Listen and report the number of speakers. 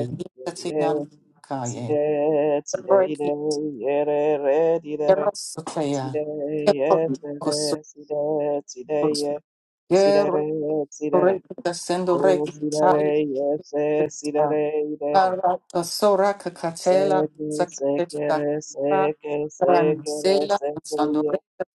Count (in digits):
2